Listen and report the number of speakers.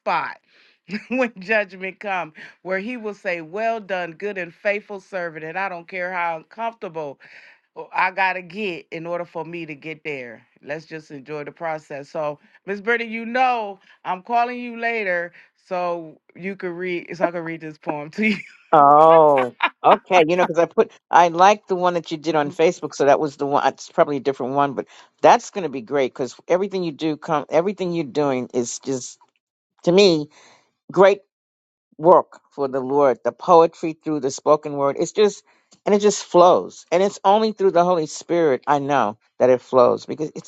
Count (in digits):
2